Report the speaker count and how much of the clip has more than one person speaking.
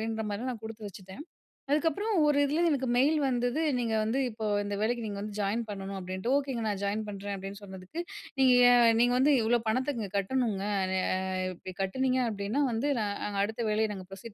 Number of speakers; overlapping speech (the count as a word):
one, no overlap